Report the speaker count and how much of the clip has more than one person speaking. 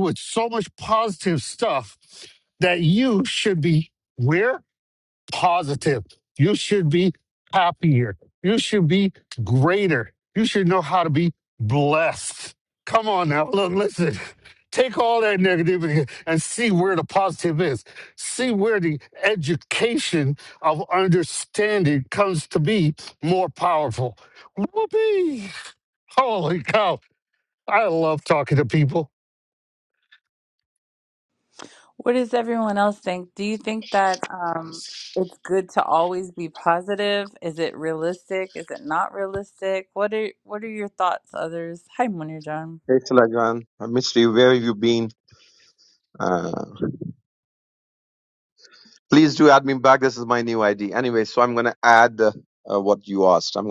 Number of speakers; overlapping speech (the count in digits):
3, no overlap